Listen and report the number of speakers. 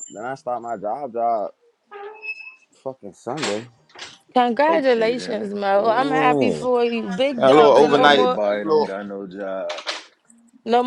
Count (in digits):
3